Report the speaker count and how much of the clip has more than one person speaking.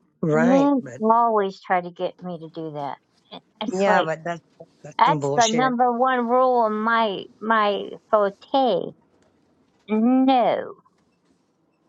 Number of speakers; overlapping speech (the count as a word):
two, about 15%